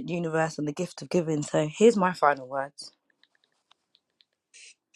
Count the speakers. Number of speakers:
one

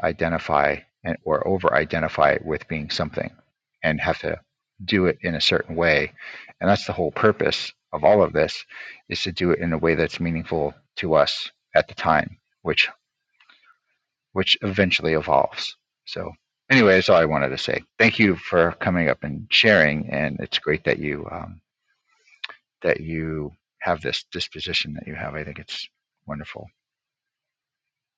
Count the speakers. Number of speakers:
one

